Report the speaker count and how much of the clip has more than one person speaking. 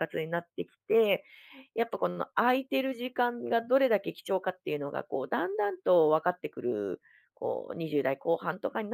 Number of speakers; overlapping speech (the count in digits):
1, no overlap